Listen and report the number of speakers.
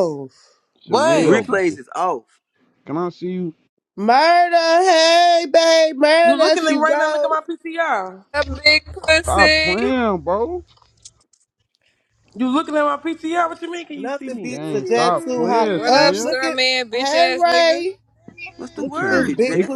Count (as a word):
five